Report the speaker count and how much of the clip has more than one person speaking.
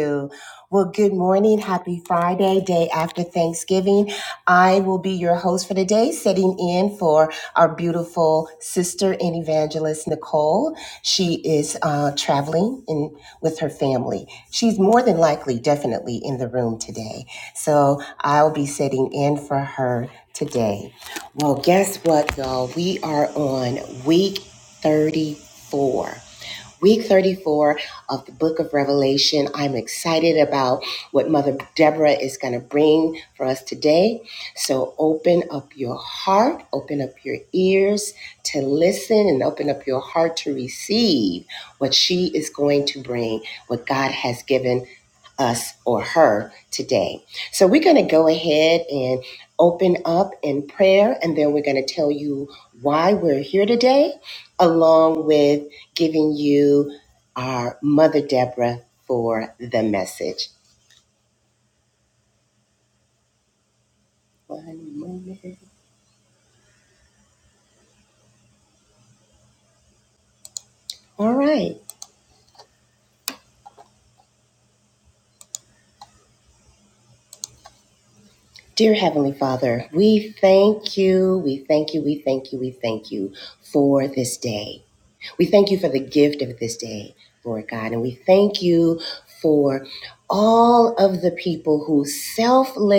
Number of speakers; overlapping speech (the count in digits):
1, no overlap